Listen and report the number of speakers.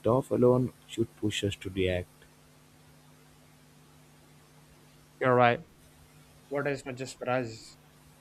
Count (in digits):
2